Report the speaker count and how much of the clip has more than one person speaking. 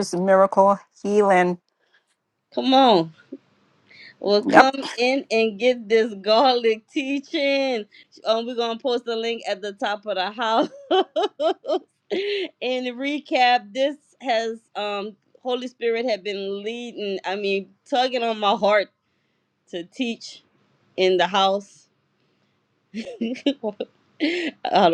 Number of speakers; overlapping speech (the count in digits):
2, about 1%